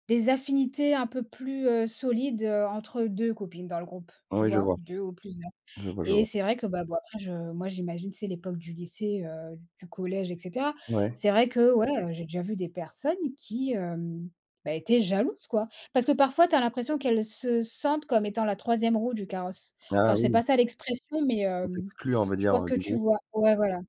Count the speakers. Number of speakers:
2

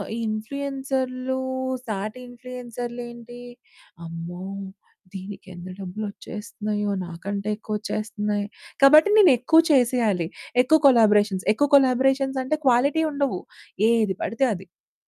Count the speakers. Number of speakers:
1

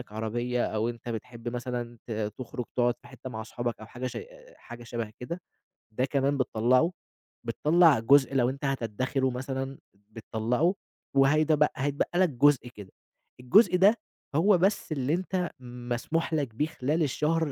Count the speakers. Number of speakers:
1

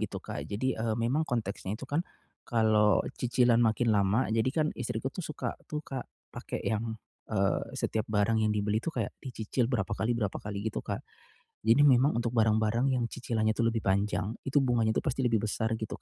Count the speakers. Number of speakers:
1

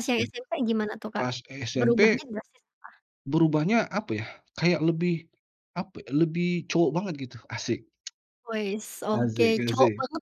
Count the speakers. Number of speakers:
2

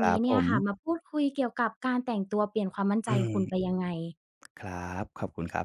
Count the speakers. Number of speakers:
2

